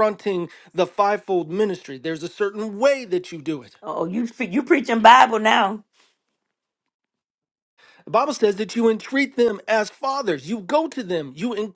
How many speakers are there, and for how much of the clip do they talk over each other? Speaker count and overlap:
two, no overlap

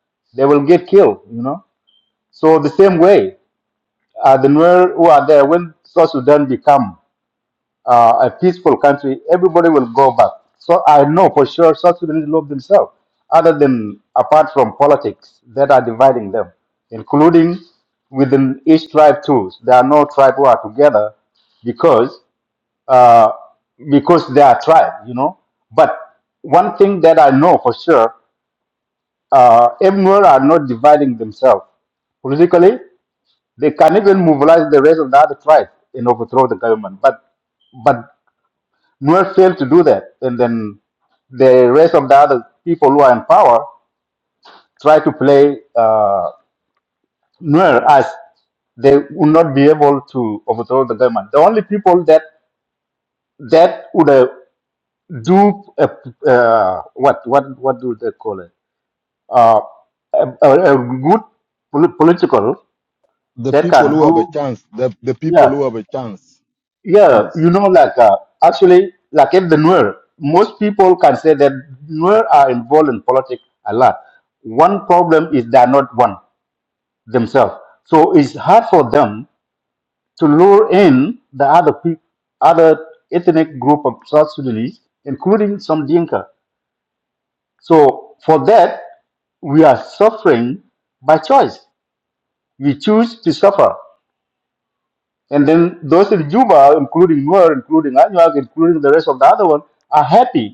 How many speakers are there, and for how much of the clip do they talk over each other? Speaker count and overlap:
two, about 1%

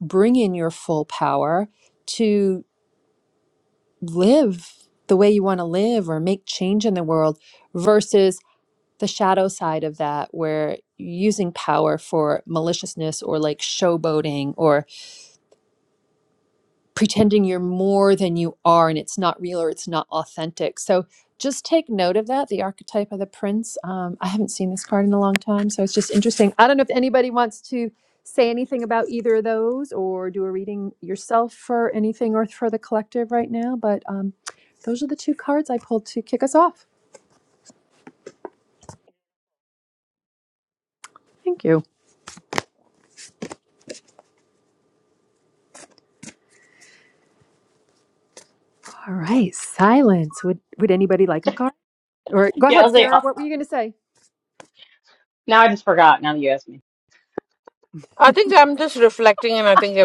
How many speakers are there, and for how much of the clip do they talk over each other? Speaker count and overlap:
three, about 1%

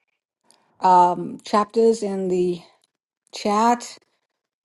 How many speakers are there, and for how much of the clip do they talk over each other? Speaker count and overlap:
one, no overlap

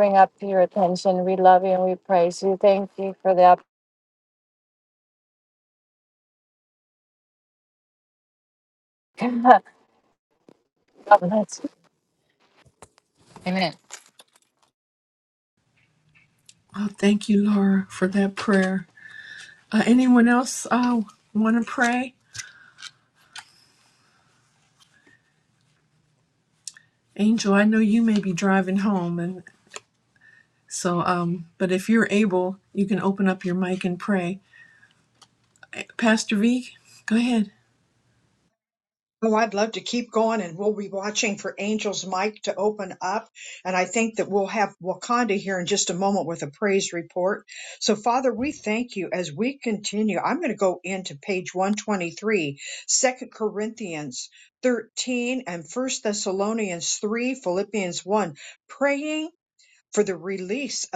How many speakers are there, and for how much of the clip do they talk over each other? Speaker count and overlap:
three, no overlap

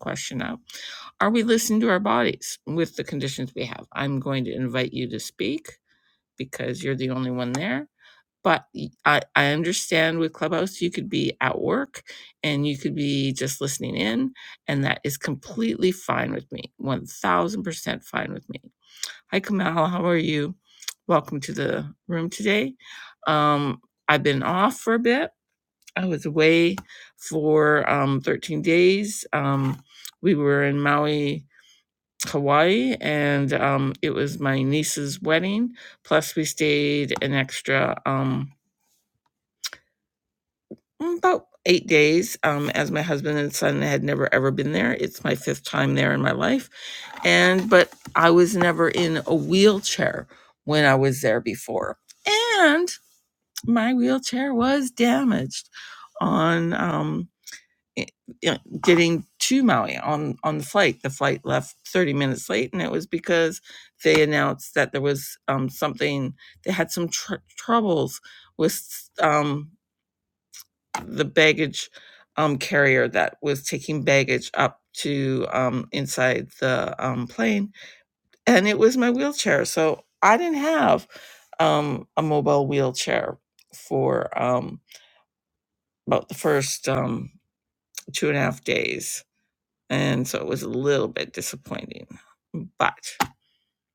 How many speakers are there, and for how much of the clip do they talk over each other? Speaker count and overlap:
one, no overlap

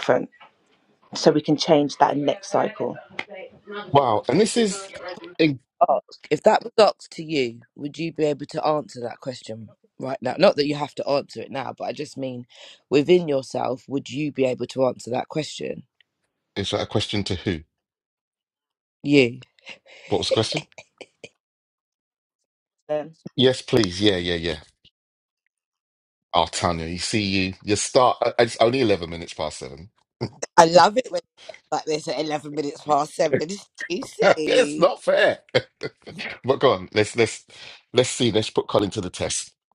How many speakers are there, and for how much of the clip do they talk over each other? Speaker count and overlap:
three, about 1%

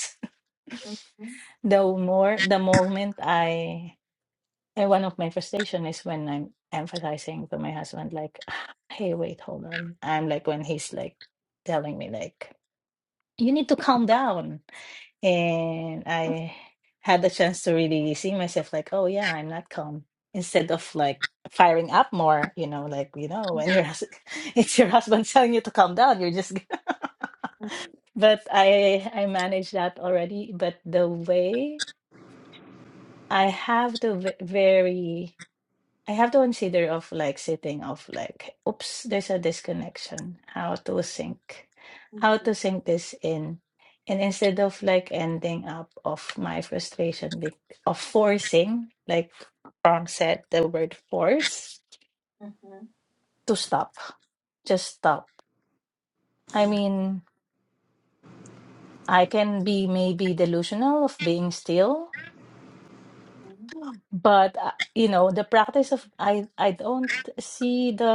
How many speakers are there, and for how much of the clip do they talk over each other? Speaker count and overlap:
two, under 1%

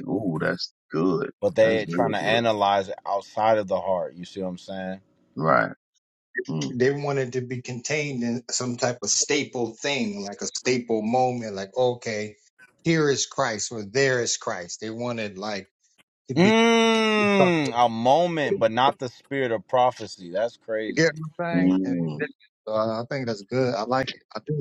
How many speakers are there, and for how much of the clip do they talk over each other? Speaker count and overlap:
three, about 6%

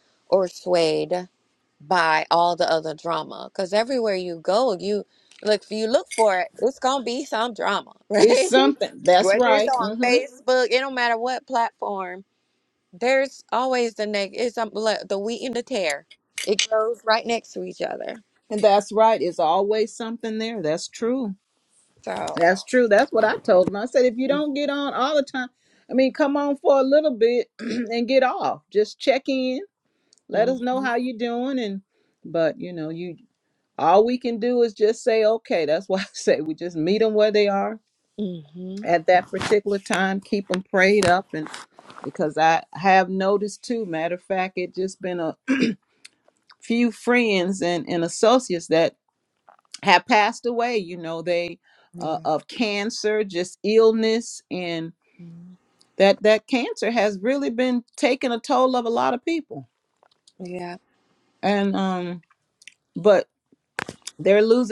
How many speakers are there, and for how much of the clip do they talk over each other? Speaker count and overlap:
two, about 4%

